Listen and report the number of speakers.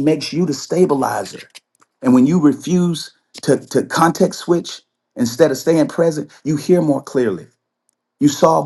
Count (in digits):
1